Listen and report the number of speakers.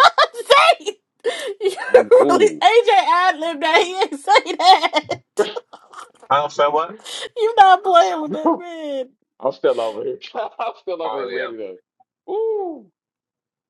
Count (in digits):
3